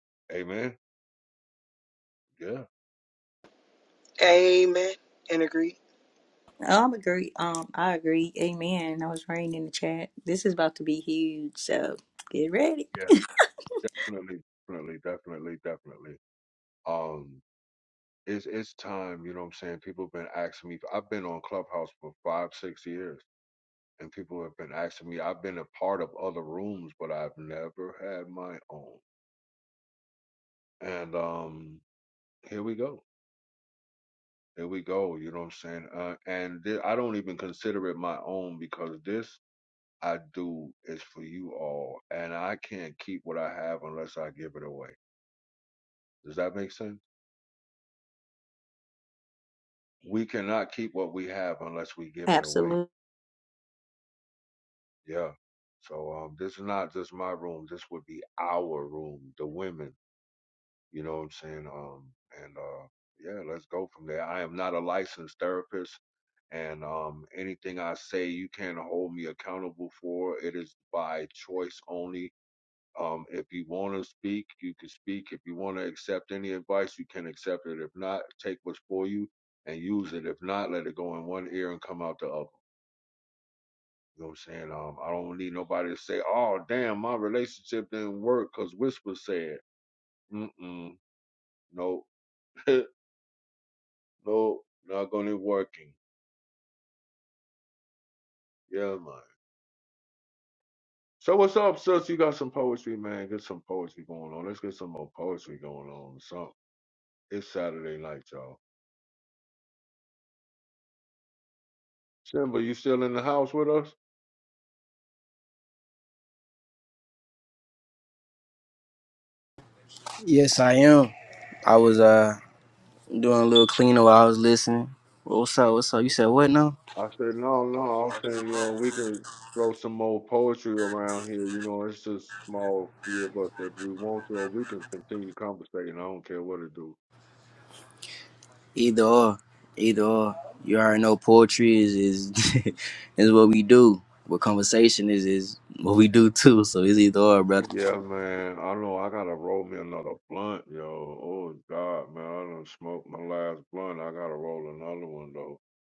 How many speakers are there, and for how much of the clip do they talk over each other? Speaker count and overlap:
4, under 1%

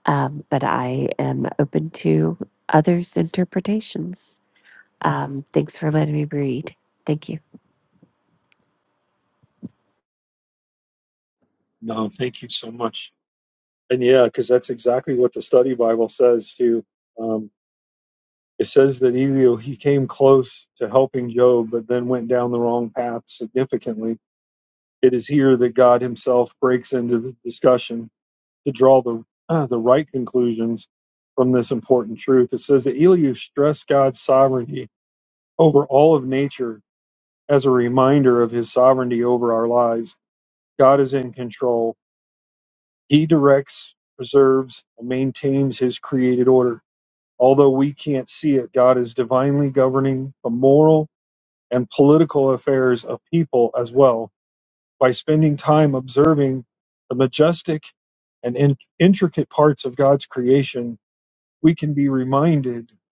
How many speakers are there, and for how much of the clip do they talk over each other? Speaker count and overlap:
2, no overlap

